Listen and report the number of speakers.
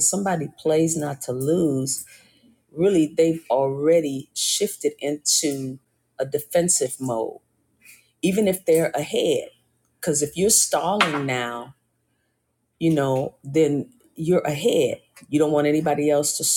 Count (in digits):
1